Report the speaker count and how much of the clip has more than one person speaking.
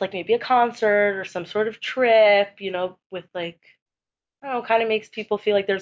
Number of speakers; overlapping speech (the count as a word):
one, no overlap